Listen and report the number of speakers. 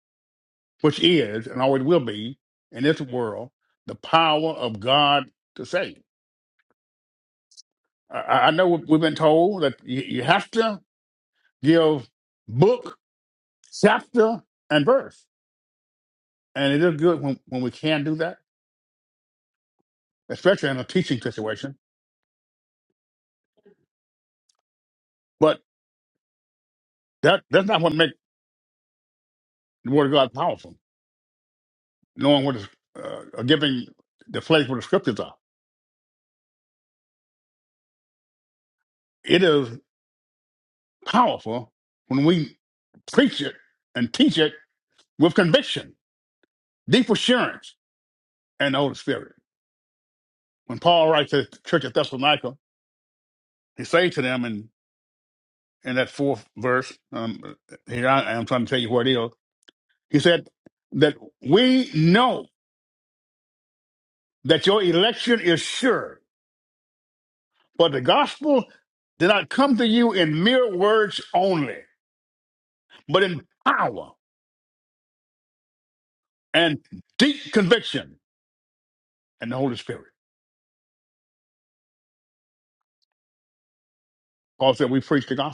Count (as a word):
one